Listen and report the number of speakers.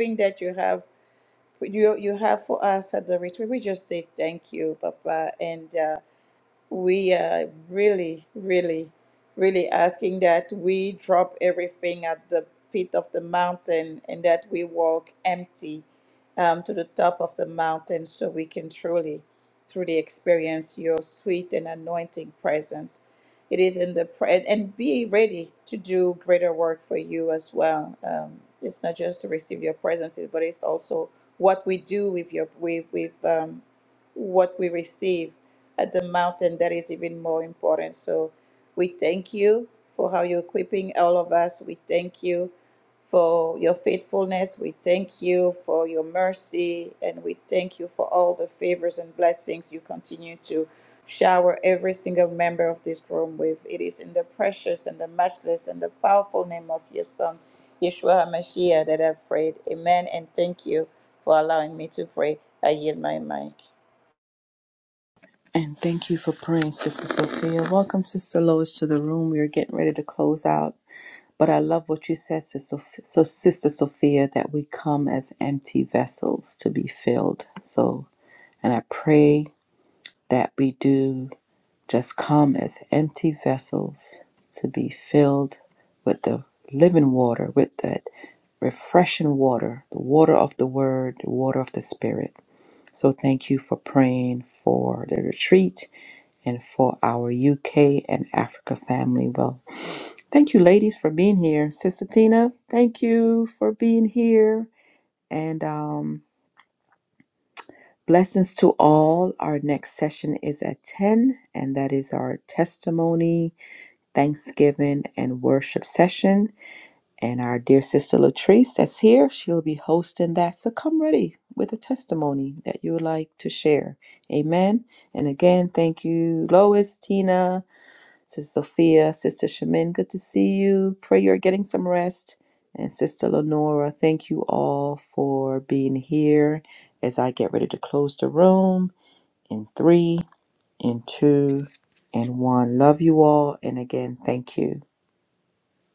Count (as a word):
two